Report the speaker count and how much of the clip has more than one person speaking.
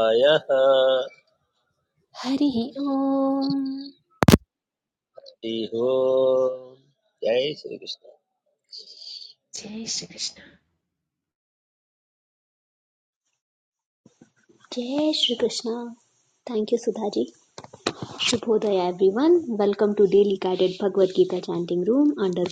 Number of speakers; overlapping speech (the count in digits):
3, no overlap